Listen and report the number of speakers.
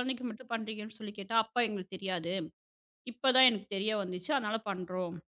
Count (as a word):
one